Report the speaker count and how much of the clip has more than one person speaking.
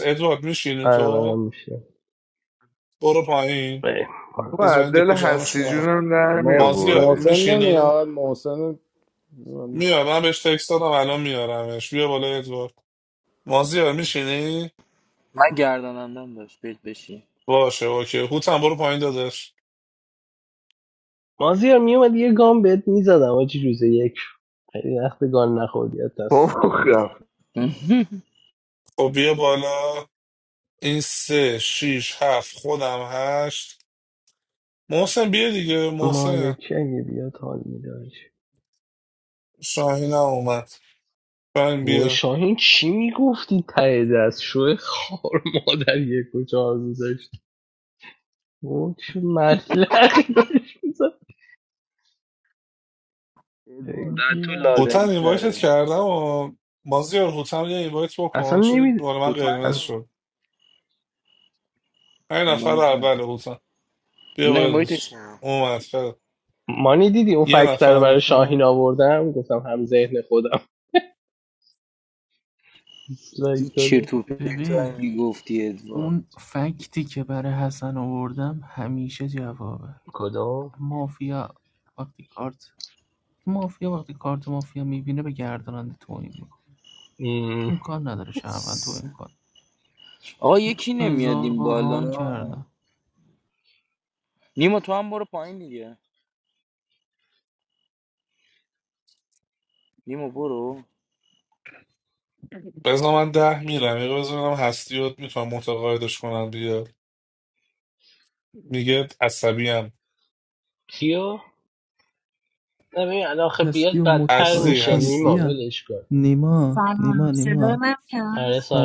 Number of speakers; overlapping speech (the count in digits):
7, about 12%